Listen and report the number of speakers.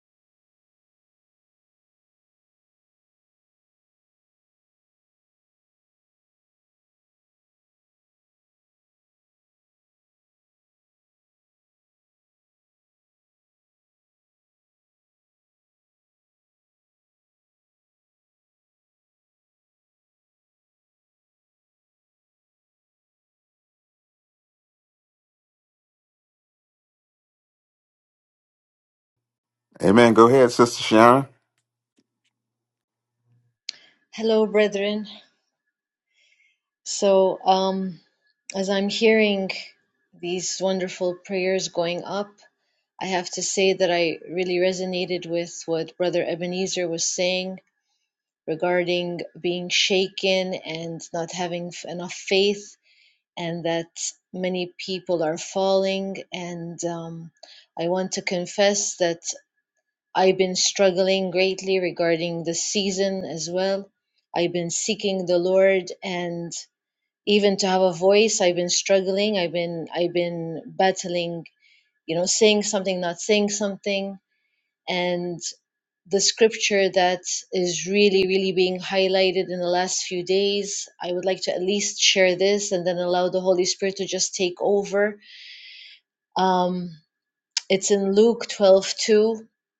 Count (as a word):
two